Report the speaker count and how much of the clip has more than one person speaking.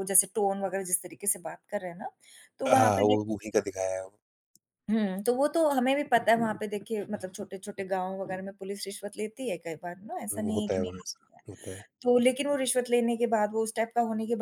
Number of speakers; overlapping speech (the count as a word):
two, about 9%